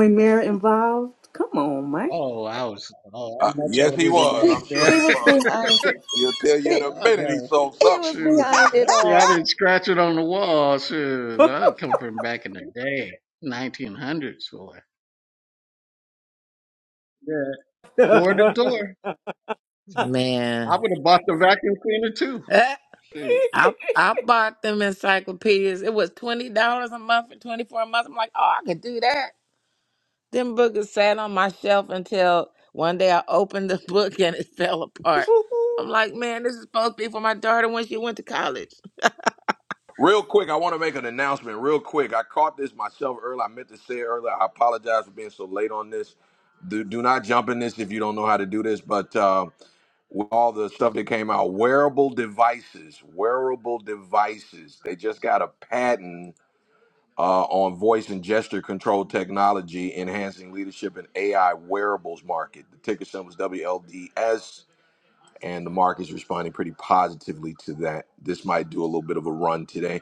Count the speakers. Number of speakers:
5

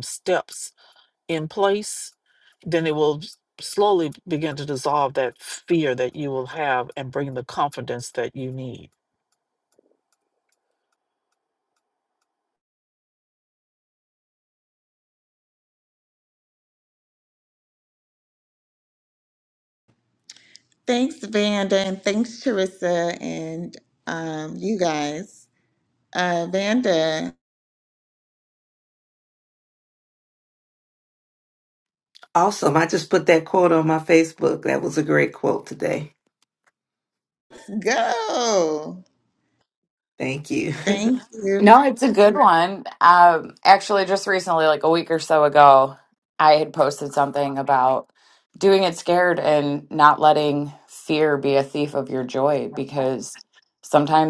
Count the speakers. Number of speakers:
4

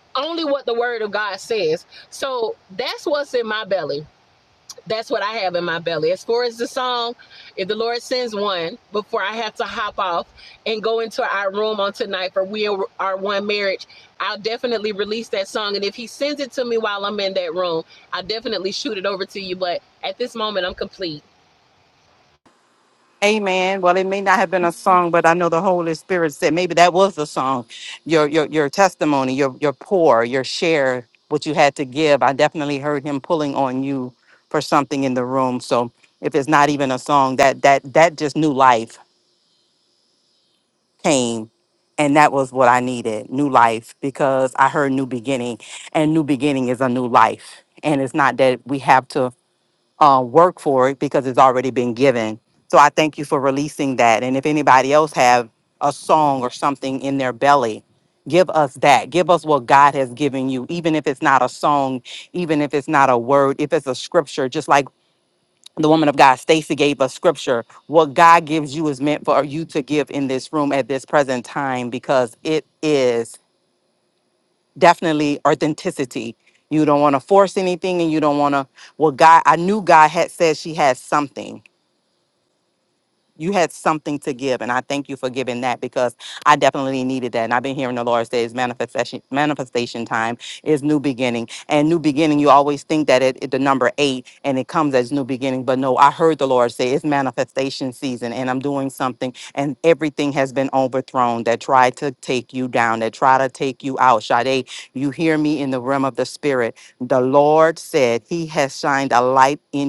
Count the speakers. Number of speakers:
2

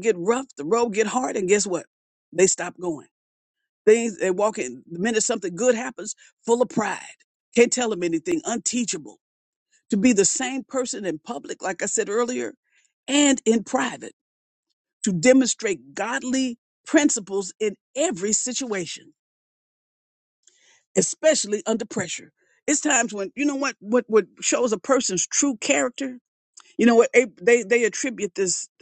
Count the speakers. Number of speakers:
1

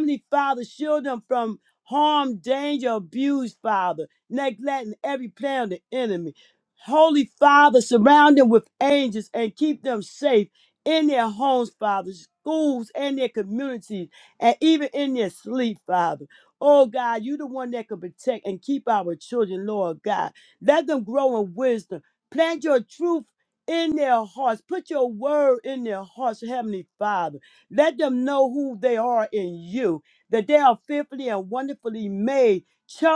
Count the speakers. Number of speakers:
1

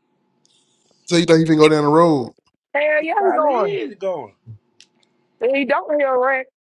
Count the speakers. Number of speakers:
3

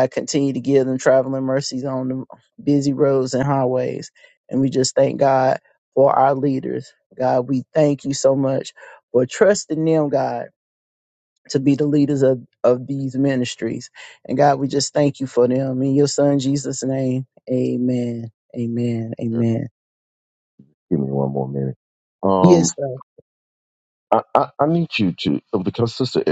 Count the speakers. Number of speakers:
2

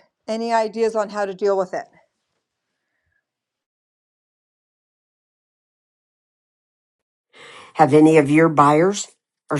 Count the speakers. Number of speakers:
2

